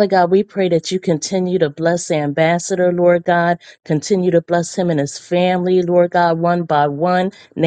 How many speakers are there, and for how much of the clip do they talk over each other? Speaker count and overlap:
1, no overlap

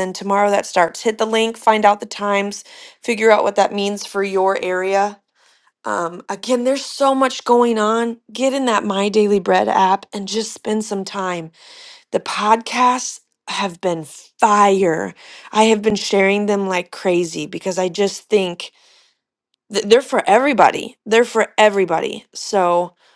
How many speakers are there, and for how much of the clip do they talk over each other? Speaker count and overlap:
1, no overlap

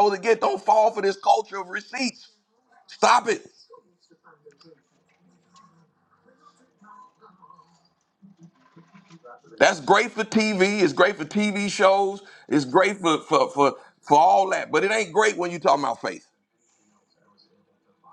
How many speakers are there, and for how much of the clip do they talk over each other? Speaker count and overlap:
1, no overlap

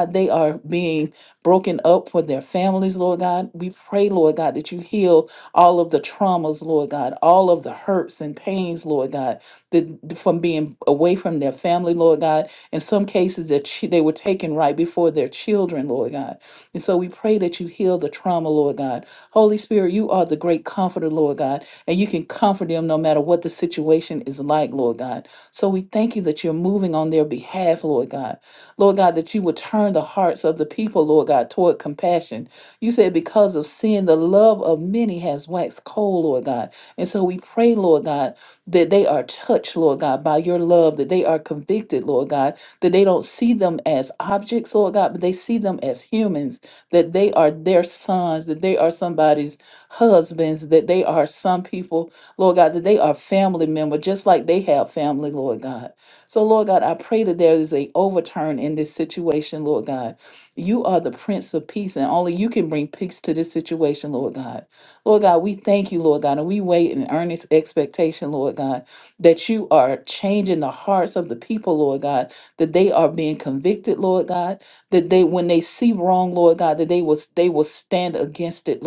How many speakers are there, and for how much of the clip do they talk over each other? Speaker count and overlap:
1, no overlap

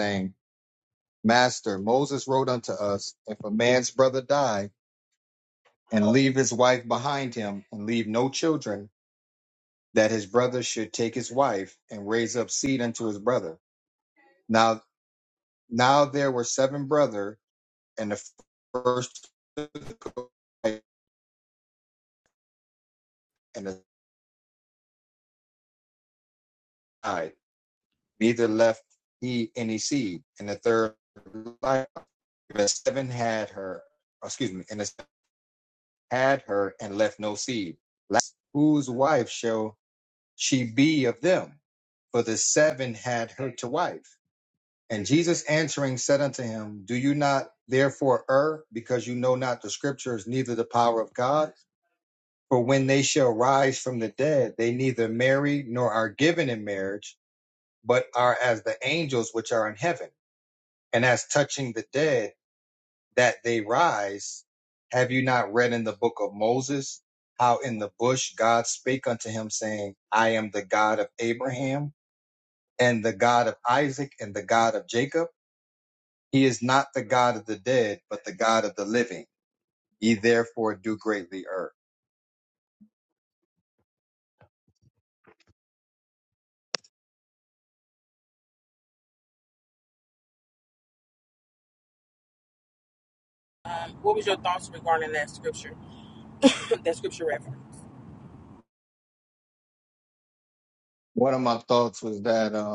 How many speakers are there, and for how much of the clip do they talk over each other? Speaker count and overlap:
2, no overlap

